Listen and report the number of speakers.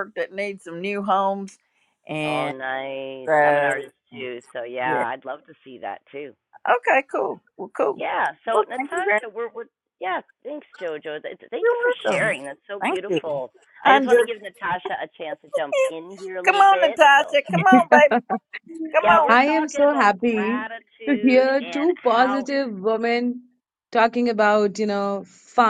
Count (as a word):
three